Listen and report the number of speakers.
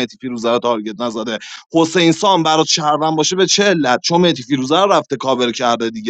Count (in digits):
1